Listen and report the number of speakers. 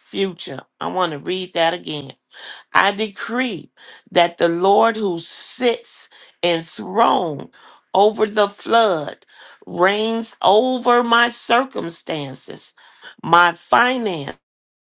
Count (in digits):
1